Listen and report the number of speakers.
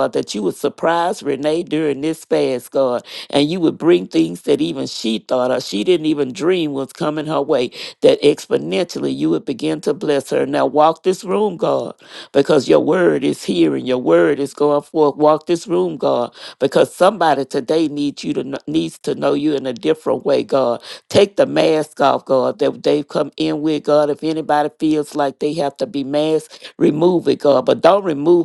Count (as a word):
one